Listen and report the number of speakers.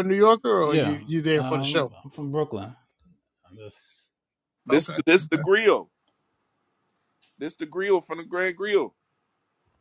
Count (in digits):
3